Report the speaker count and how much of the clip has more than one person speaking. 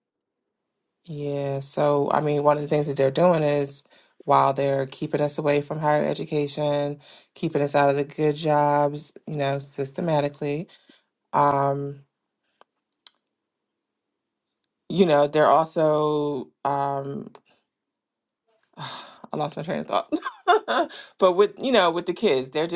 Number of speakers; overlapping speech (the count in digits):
1, no overlap